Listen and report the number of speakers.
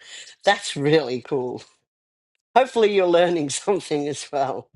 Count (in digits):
1